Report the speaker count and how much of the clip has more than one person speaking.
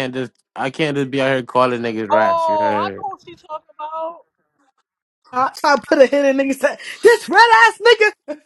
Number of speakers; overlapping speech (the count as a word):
three, about 11%